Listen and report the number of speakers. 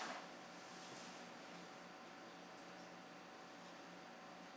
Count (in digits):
0